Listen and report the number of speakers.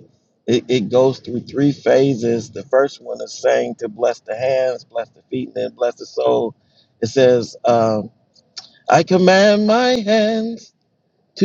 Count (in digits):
1